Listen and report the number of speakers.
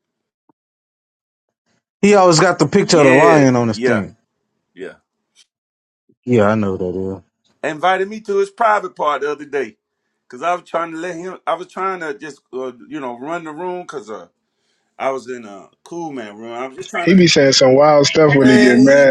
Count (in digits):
3